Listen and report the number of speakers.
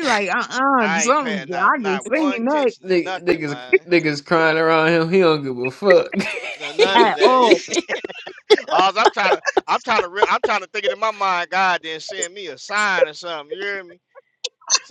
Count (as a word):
three